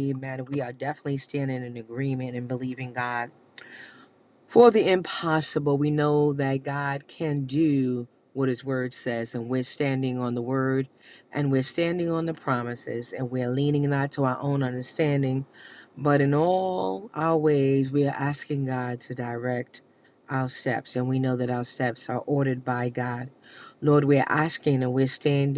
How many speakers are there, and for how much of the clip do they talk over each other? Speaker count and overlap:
1, no overlap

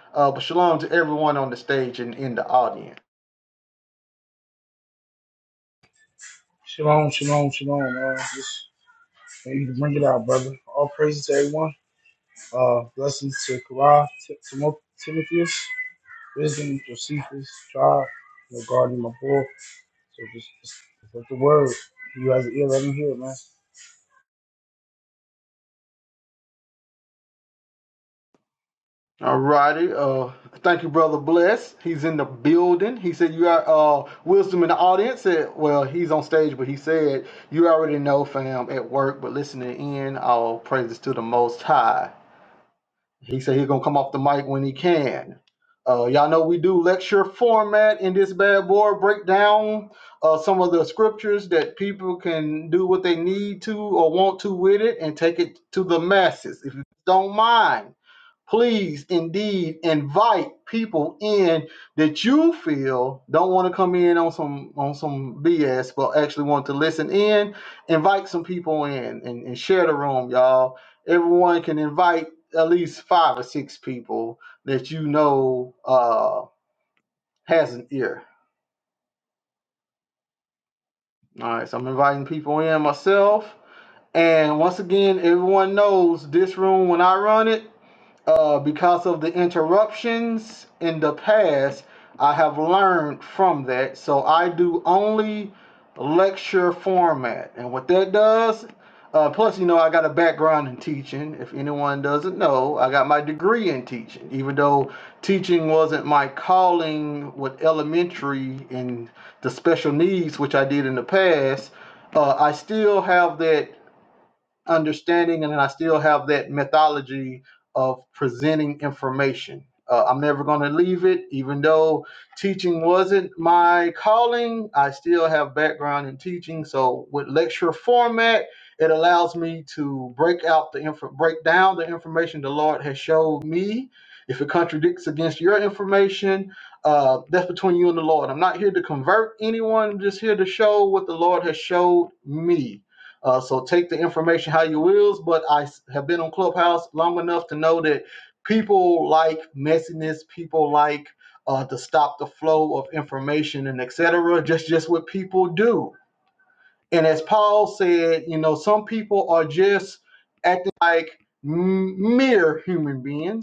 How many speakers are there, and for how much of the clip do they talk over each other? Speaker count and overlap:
2, no overlap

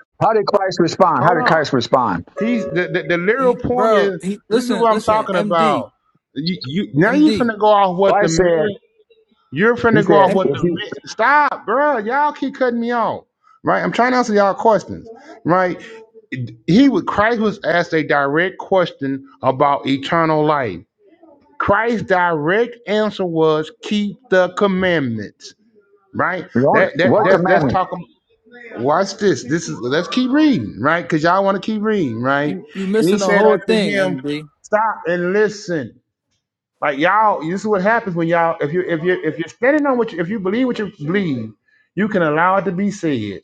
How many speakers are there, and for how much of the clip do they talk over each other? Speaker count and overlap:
3, about 17%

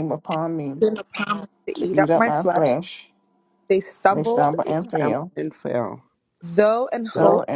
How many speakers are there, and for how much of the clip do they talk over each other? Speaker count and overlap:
3, about 33%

